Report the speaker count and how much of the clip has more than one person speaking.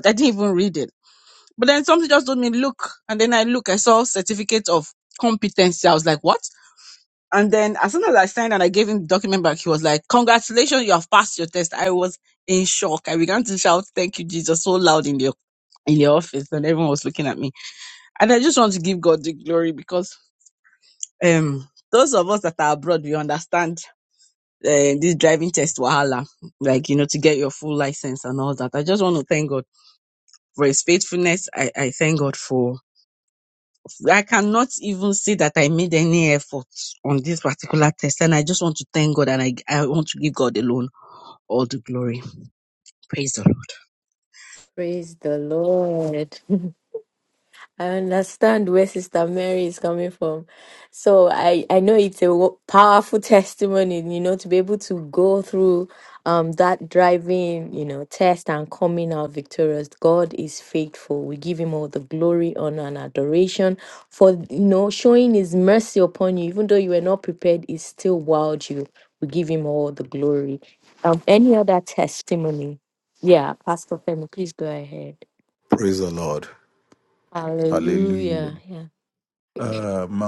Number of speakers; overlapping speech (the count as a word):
three, about 1%